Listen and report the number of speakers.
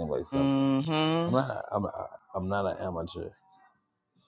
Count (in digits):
2